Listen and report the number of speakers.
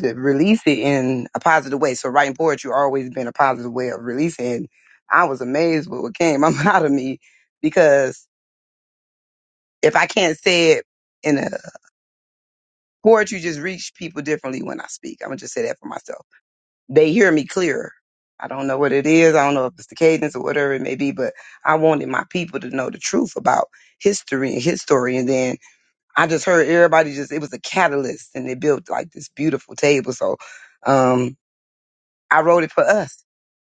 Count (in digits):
1